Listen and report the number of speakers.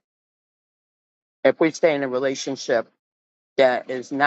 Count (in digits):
1